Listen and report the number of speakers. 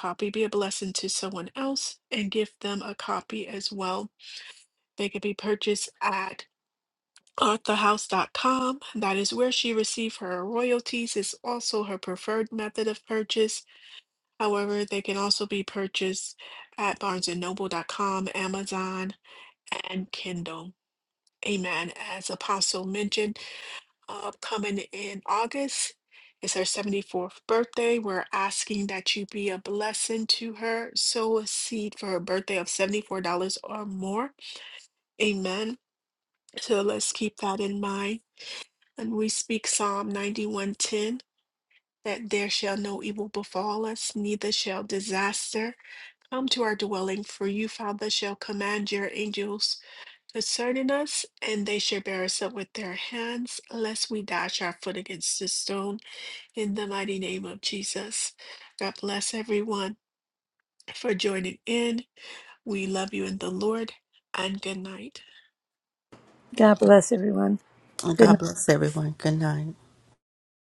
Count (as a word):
three